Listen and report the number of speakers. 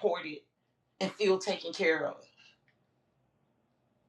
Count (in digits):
1